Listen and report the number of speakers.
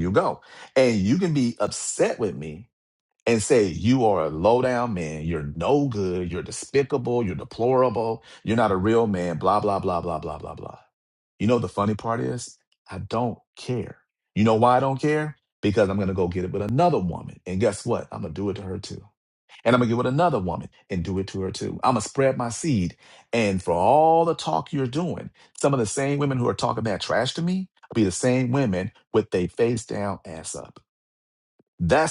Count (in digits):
1